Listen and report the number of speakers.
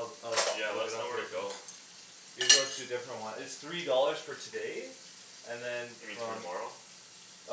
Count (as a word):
two